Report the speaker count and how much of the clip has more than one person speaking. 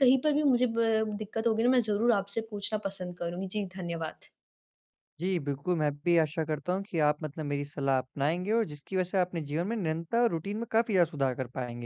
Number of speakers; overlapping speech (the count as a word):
two, no overlap